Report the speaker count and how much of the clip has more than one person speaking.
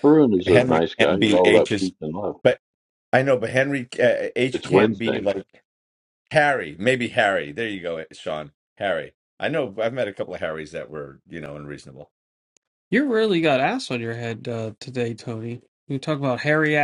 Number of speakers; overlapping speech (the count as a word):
three, about 12%